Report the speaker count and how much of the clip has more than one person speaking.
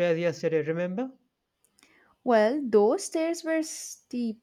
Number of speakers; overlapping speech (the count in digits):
2, no overlap